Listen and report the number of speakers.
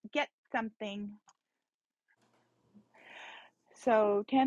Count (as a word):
one